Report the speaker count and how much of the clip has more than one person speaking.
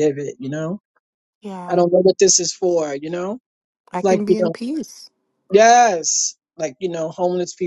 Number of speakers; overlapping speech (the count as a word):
two, about 8%